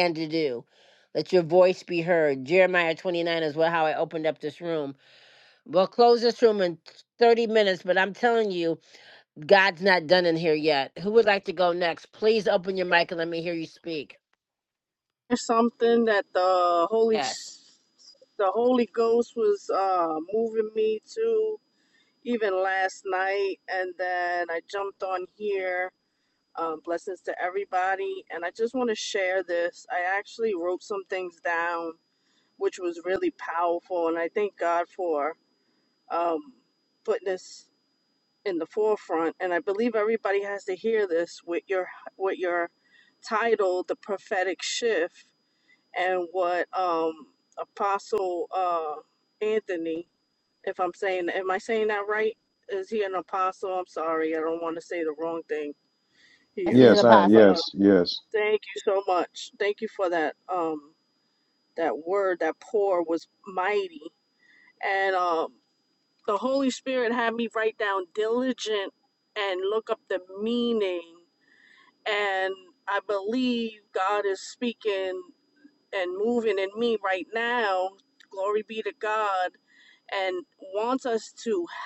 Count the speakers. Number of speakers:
three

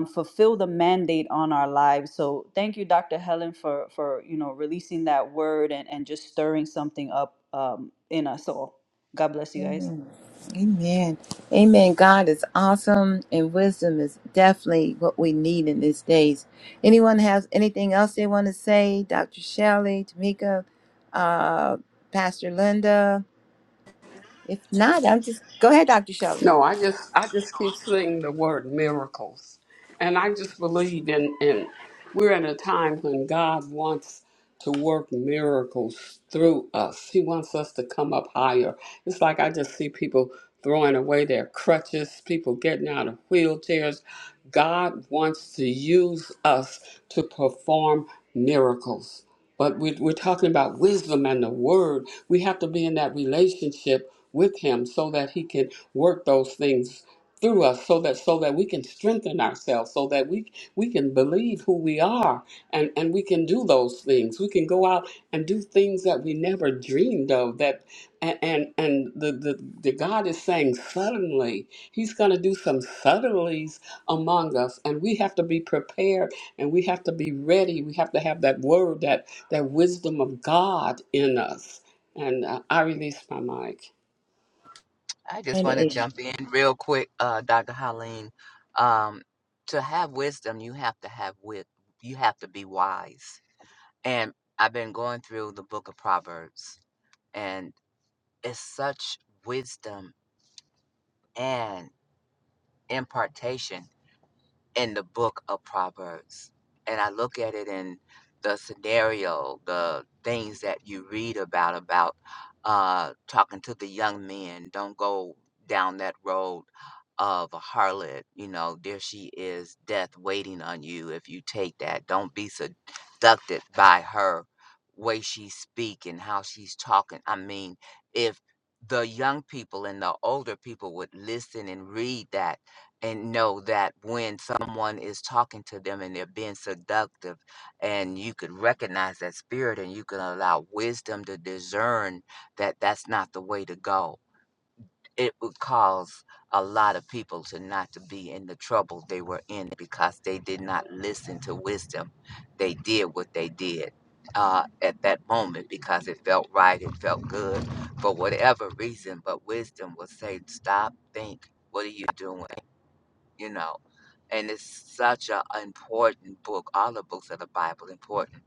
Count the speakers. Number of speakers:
four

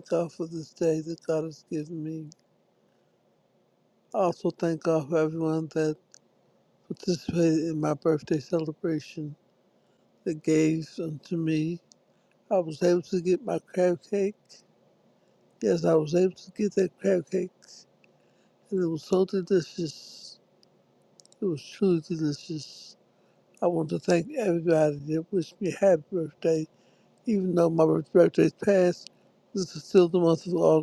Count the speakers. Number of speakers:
one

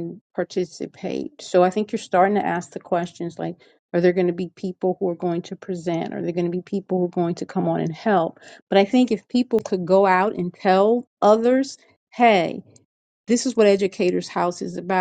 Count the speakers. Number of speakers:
one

